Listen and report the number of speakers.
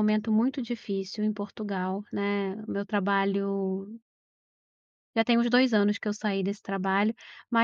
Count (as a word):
one